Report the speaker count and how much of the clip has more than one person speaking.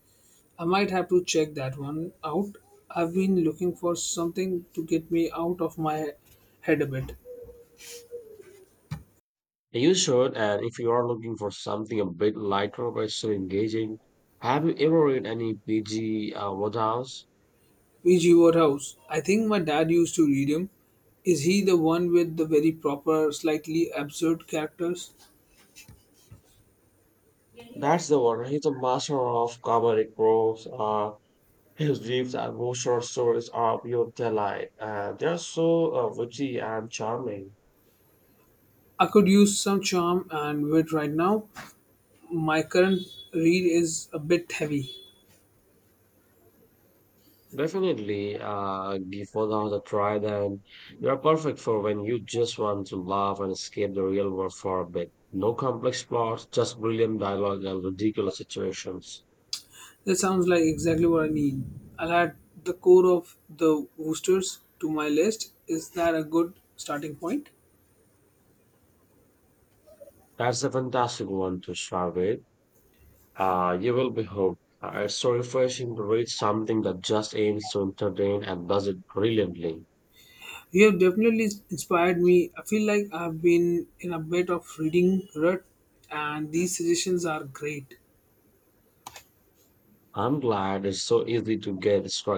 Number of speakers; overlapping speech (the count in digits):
2, no overlap